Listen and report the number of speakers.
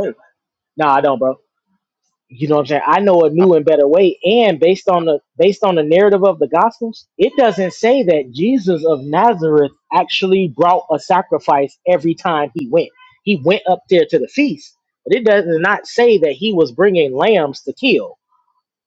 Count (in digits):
1